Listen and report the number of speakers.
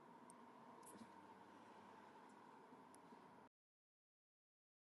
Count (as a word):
zero